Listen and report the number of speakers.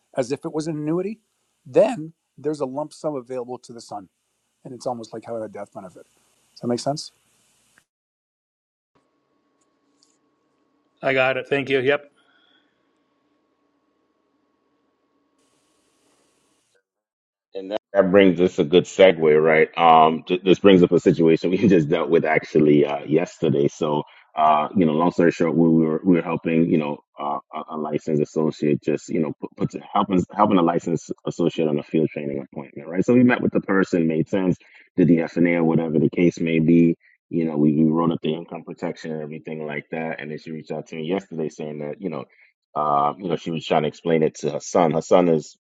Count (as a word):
three